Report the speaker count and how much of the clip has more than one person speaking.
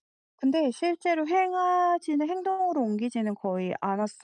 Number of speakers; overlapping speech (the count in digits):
1, no overlap